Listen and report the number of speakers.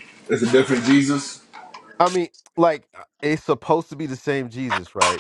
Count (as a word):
two